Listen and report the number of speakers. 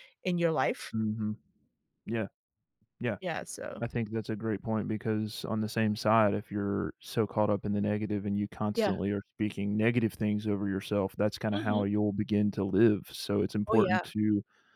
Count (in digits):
2